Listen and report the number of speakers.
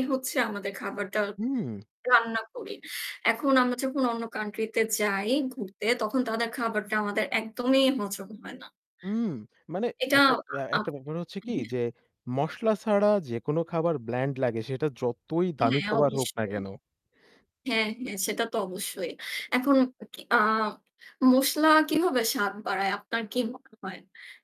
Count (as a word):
two